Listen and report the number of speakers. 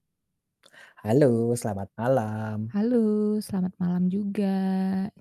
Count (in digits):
2